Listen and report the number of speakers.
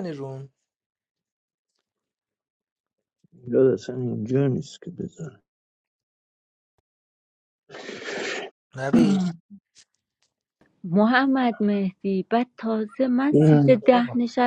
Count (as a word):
three